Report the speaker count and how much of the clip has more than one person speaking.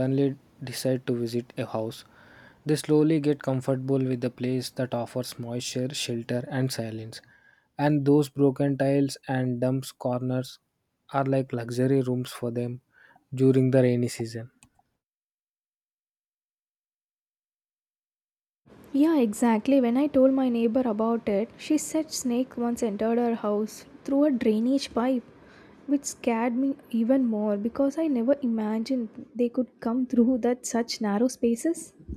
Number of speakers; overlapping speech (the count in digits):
2, no overlap